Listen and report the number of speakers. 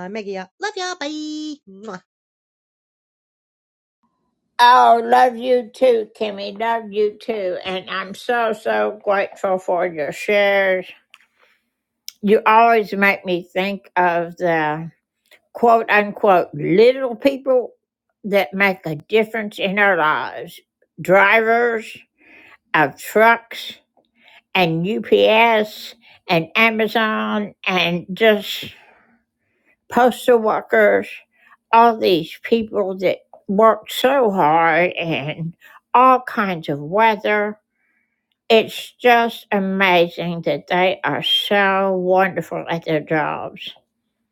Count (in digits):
2